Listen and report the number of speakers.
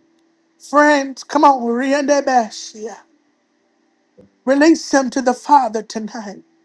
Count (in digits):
1